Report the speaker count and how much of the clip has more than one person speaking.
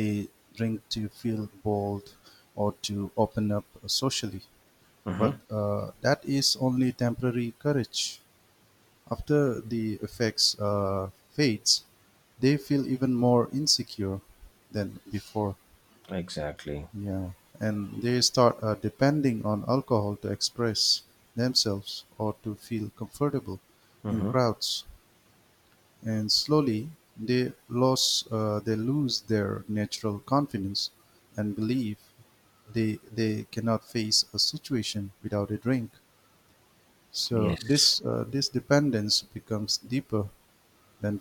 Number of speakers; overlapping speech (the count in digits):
2, about 3%